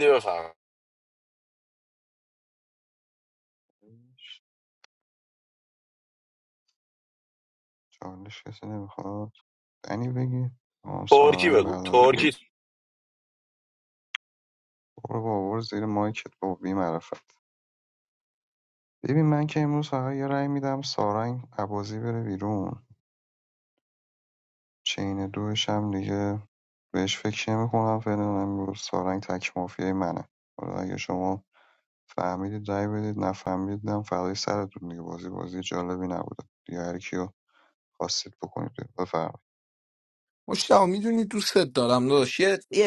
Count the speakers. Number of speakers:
3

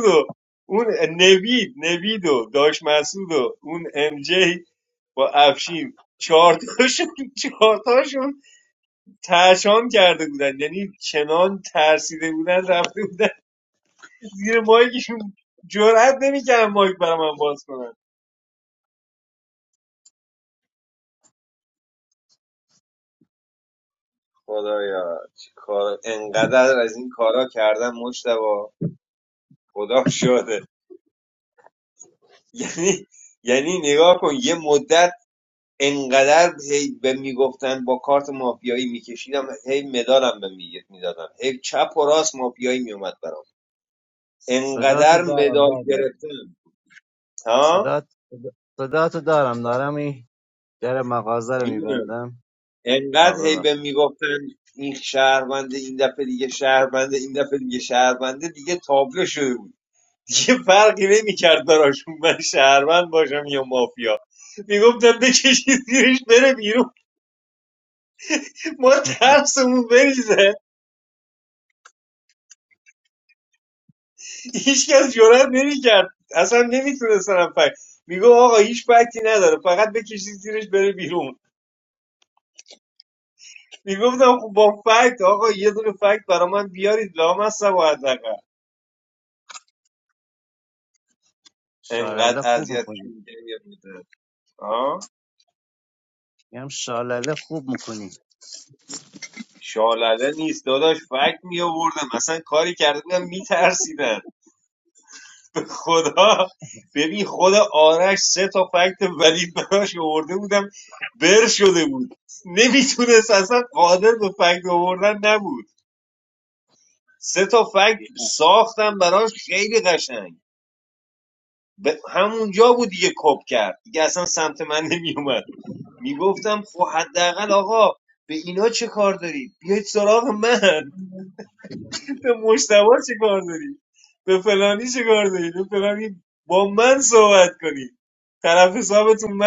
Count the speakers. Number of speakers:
2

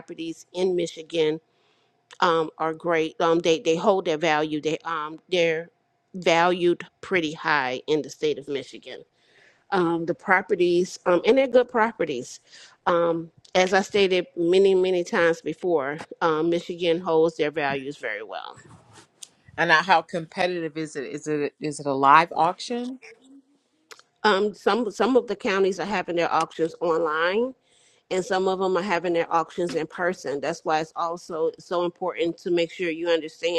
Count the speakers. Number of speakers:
2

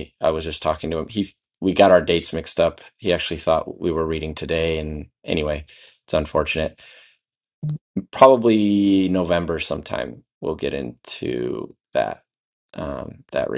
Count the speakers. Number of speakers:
1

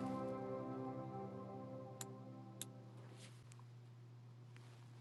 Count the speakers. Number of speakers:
0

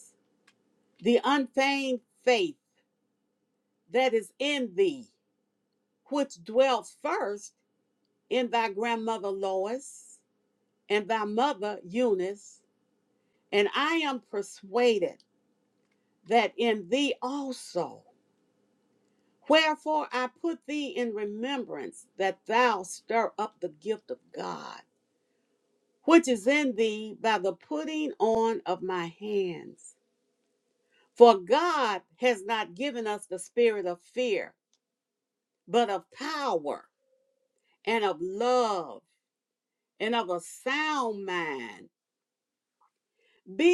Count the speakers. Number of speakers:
1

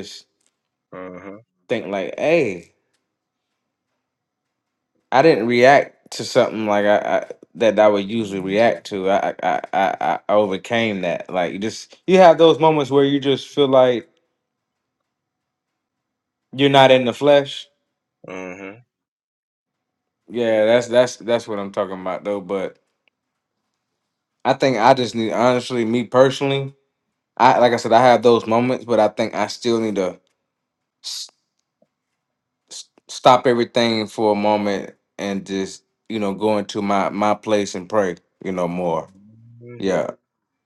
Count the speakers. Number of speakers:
2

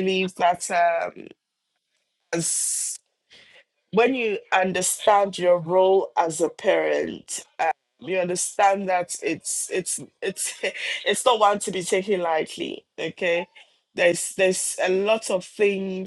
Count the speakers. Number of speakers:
1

